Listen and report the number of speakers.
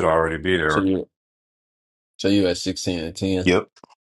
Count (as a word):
two